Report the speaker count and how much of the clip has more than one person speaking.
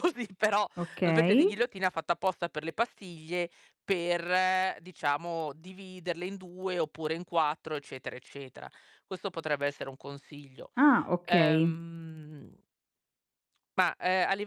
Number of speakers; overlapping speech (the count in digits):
2, about 7%